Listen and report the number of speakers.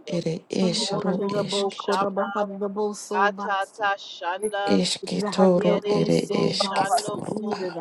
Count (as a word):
three